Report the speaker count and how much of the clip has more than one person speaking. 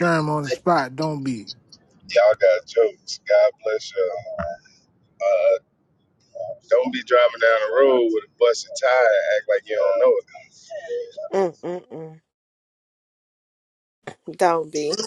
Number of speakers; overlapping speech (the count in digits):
3, no overlap